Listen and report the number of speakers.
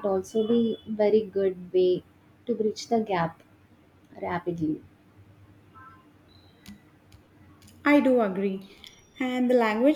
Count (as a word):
two